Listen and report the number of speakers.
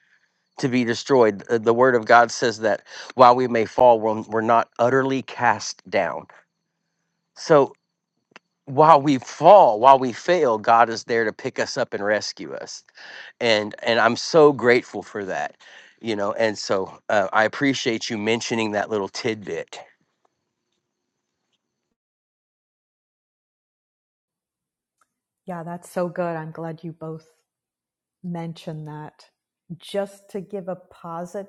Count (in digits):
2